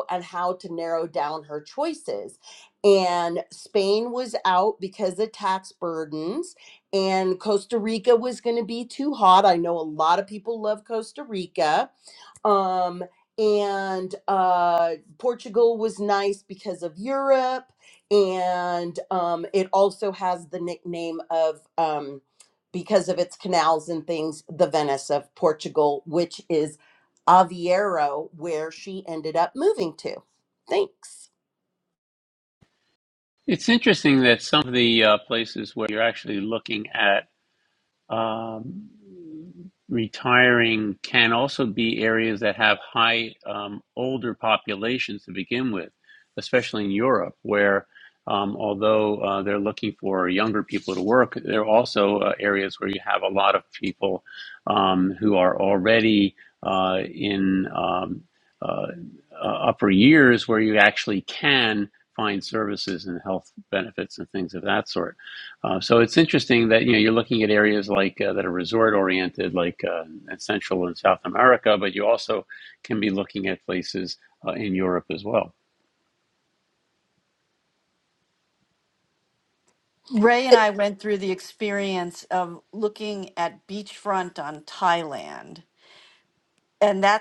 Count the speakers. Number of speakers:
three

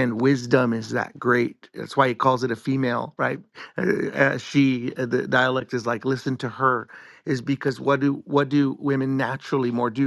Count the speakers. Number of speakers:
one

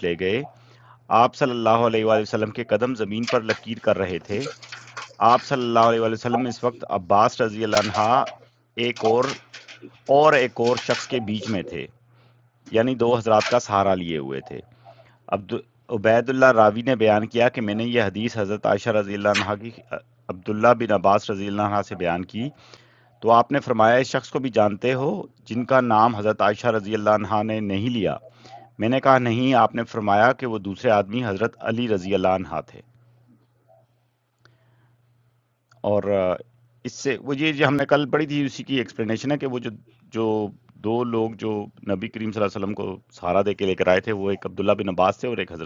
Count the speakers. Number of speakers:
one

